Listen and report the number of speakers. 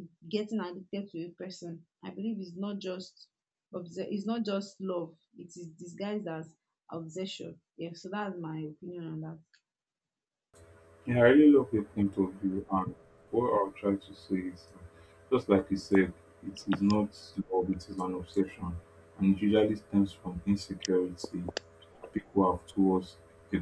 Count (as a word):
two